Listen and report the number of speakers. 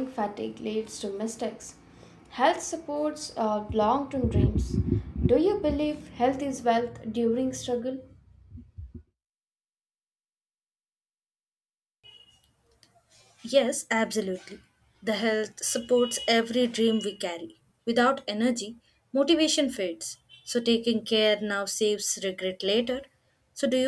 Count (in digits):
2